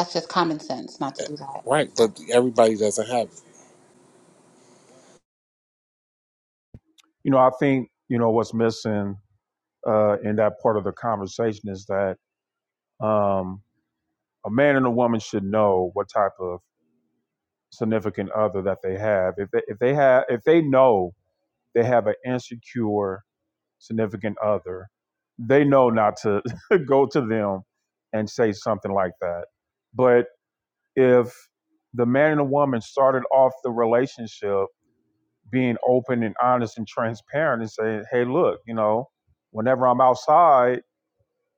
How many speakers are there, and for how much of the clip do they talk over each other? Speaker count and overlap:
3, no overlap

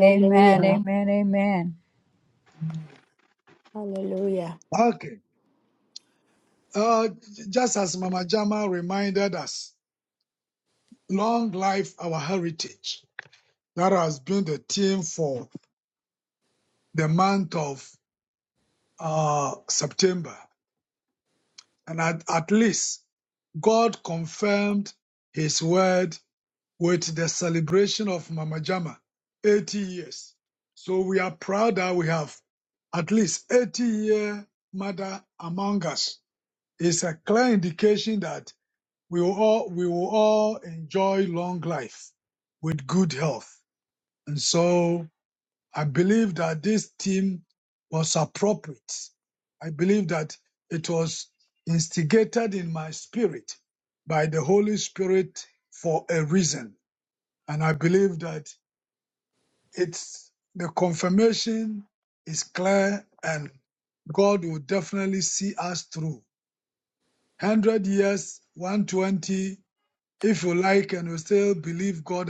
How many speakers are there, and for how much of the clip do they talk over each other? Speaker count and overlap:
3, about 1%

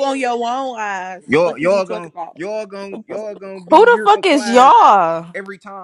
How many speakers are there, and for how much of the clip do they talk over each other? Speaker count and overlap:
3, about 33%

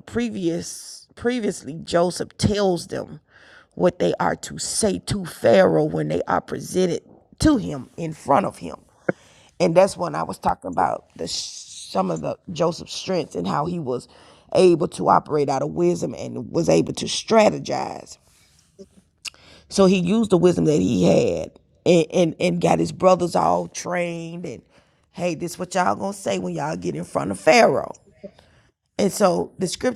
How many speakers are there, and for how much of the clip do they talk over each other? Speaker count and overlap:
1, no overlap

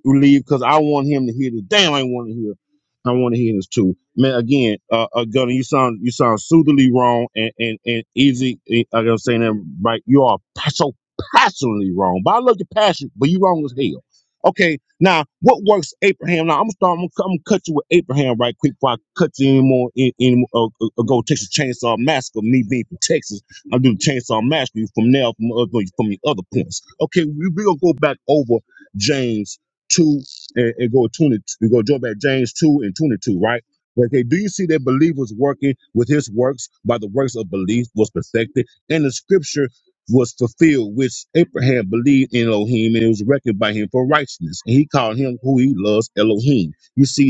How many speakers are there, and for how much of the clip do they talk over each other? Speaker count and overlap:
1, no overlap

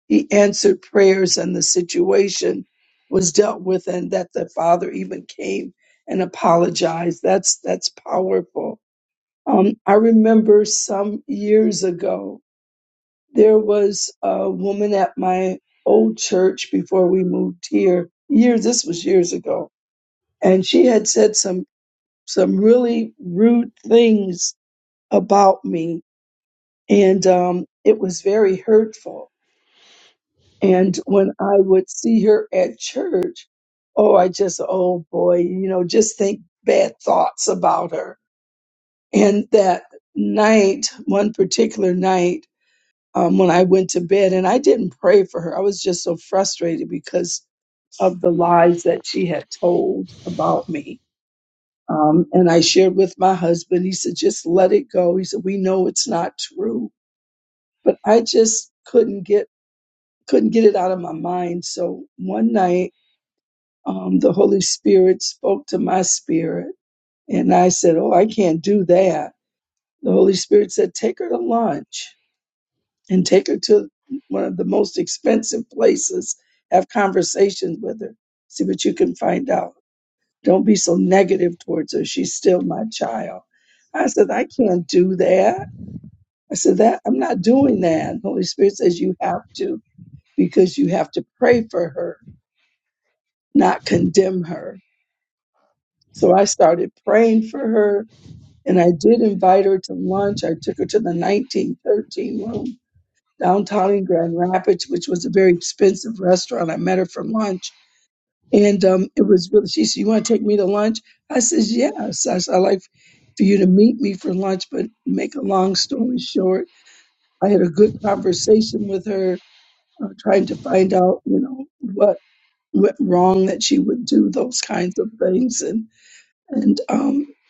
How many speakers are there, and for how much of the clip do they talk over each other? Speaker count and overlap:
1, no overlap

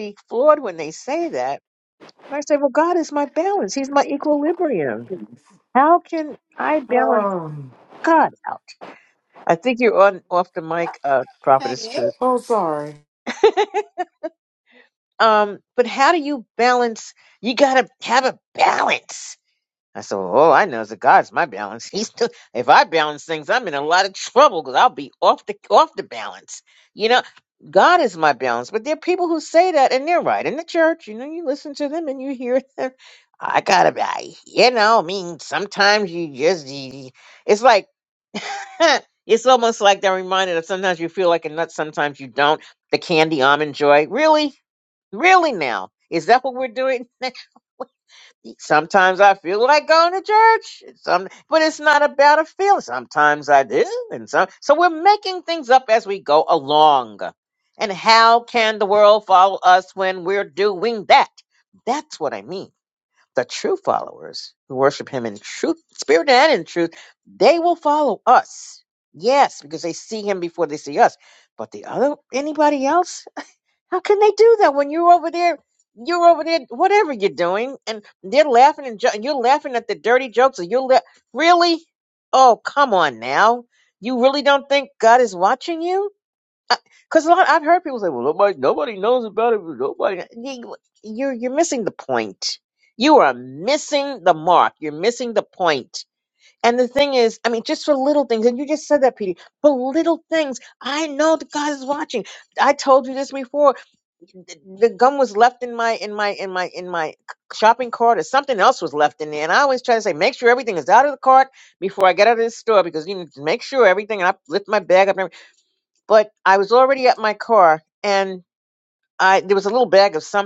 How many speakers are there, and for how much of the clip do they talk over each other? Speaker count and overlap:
2, under 1%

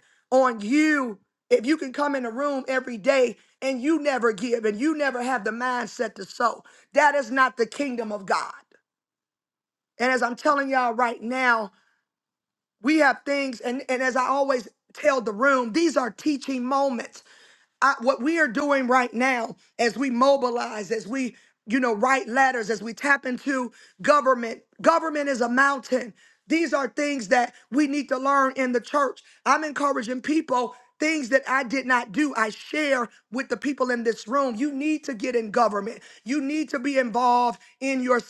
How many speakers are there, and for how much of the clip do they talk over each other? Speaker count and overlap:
1, no overlap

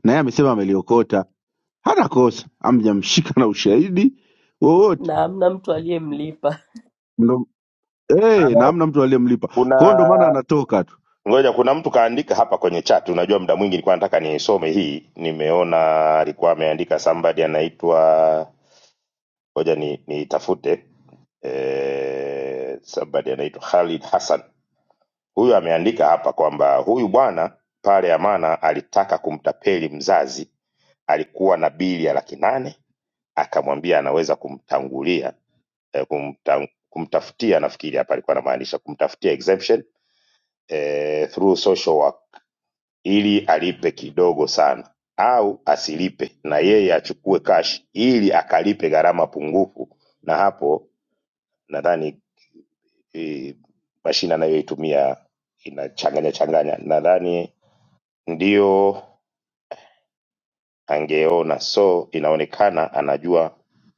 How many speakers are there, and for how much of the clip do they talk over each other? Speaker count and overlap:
3, under 1%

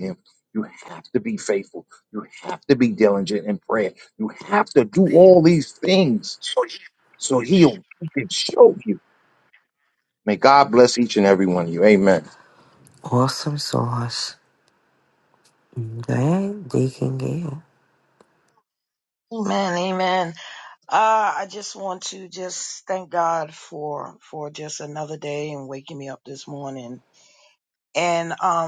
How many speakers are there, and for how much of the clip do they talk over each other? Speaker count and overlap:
3, no overlap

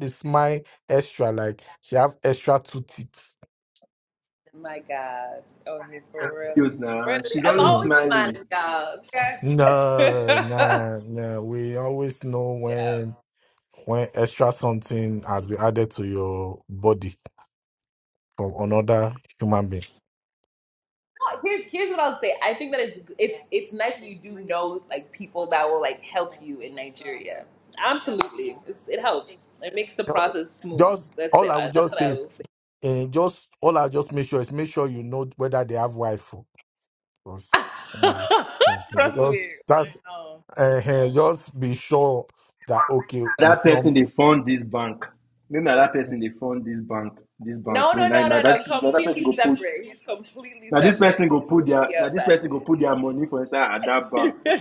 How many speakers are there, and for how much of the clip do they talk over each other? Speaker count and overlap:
3, about 17%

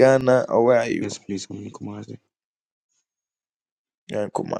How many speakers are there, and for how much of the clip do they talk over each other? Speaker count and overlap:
2, about 3%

